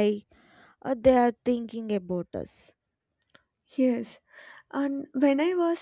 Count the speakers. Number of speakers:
2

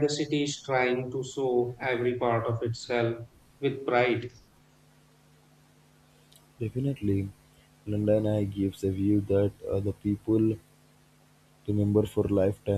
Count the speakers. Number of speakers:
2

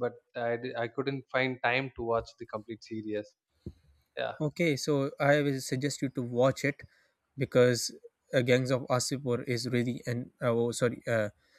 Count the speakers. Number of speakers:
2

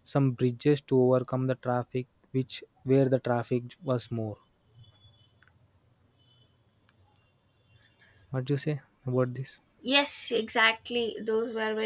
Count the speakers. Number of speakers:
2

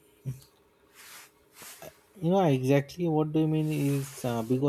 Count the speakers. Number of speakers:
1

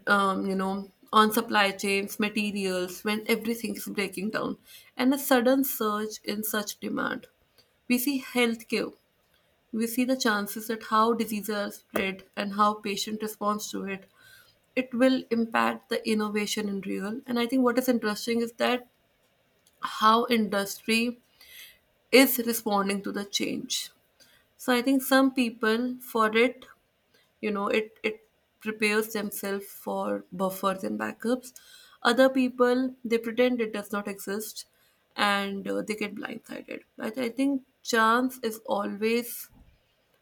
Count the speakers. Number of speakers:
1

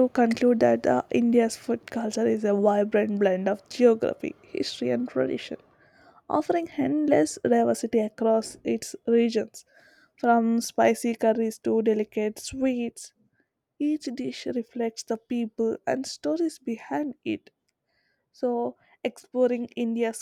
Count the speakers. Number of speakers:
1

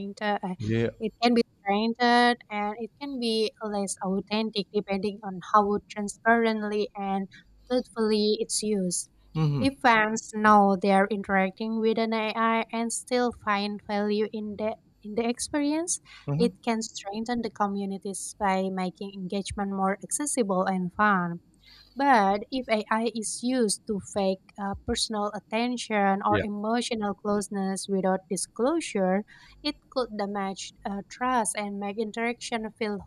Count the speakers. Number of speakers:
2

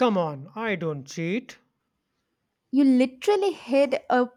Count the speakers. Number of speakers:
2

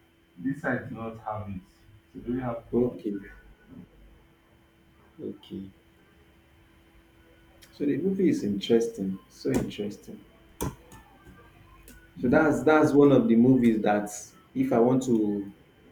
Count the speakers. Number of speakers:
2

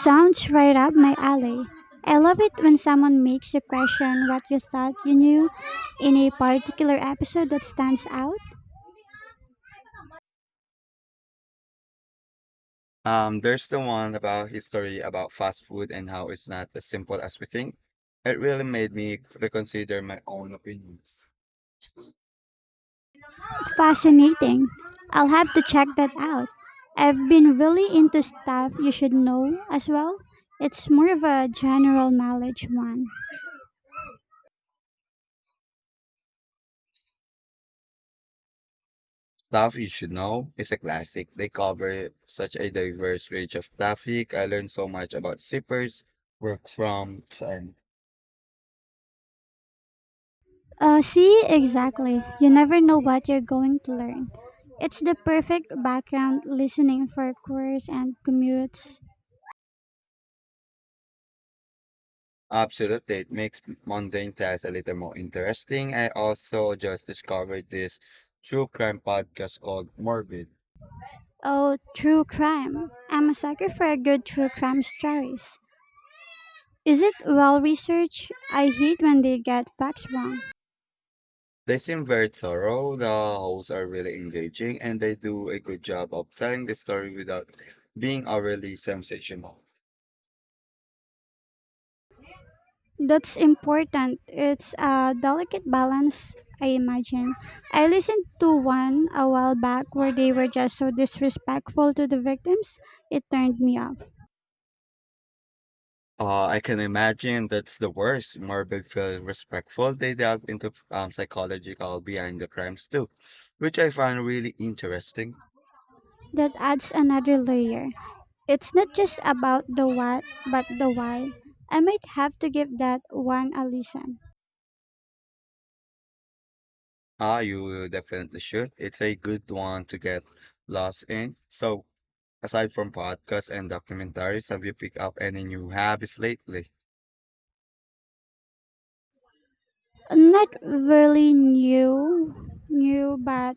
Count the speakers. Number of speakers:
2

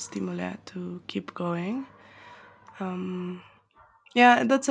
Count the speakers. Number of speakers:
1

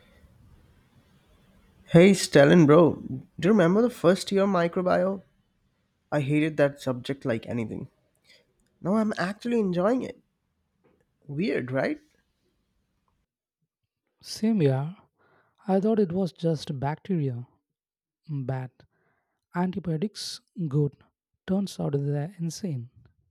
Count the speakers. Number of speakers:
2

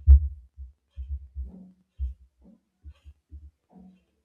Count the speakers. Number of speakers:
0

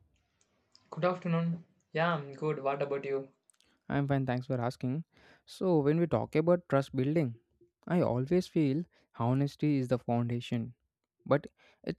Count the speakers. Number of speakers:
2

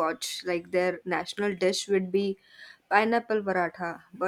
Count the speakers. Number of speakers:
1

